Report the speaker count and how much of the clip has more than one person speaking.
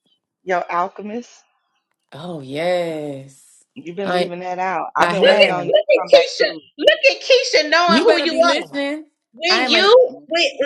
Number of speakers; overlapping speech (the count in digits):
3, about 30%